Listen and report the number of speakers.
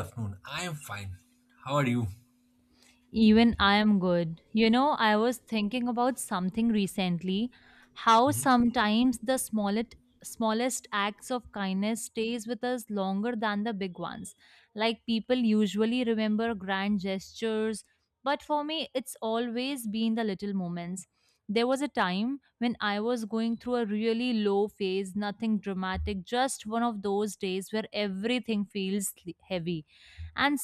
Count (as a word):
two